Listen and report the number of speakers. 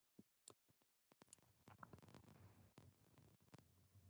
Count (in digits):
0